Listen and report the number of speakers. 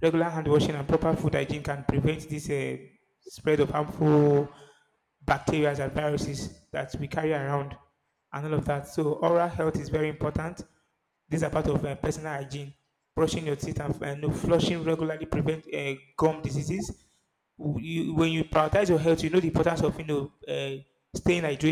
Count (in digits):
1